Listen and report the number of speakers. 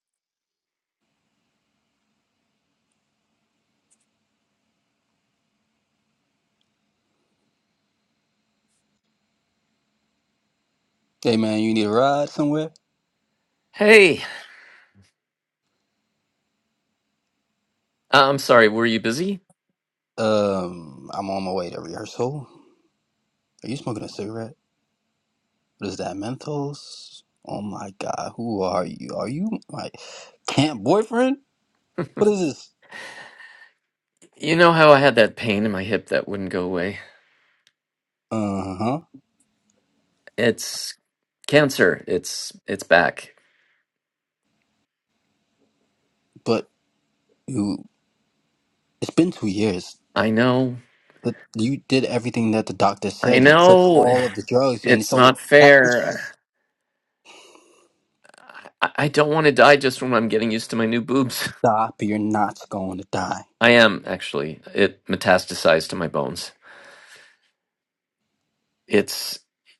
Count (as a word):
two